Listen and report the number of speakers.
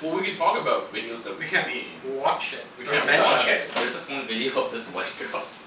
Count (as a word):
three